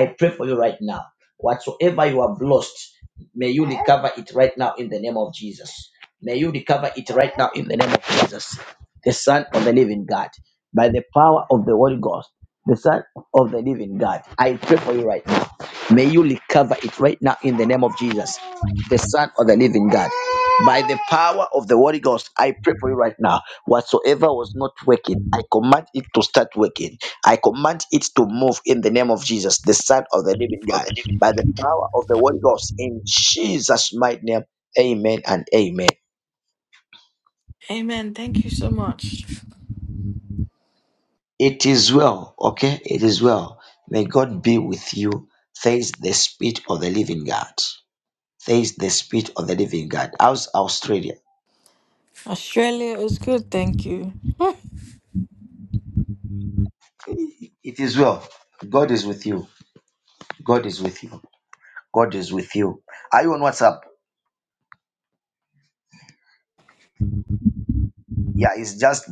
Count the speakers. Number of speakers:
2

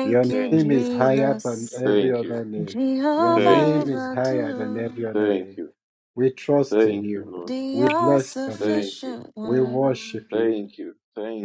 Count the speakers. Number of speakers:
3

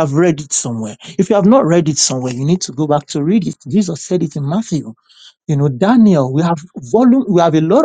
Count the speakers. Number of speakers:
1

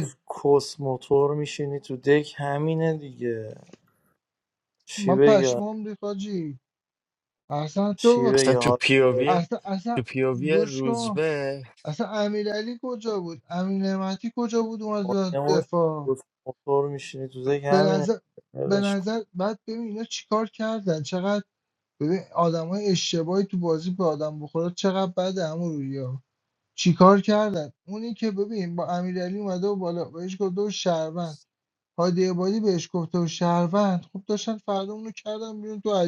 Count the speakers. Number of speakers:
3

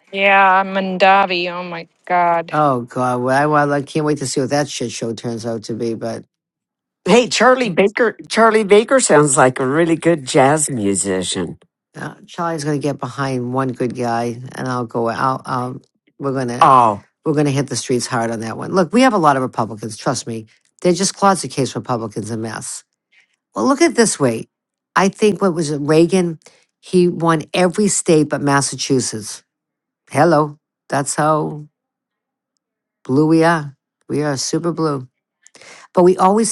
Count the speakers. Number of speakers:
3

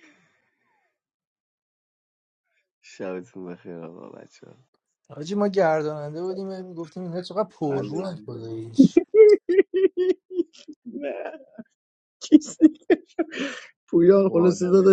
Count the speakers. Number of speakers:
3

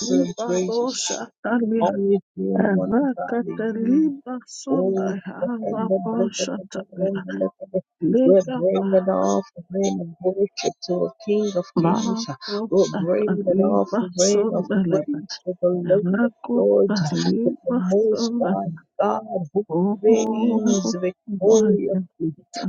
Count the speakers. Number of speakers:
2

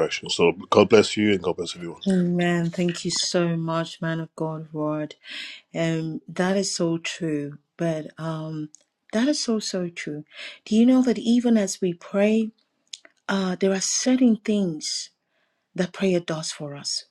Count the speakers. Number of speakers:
2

